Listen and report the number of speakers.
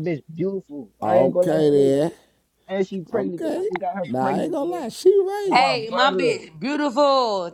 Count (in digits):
3